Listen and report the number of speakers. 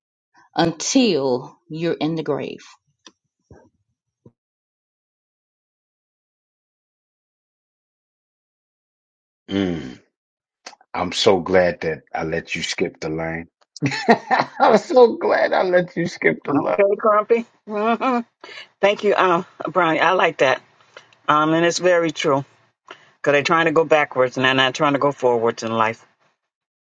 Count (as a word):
three